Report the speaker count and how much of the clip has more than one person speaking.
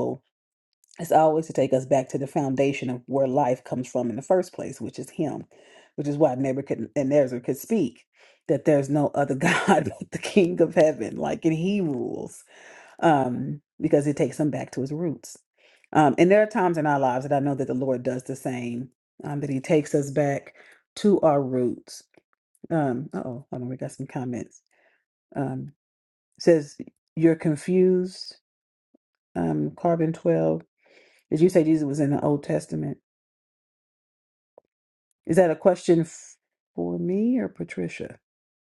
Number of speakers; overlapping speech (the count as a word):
one, no overlap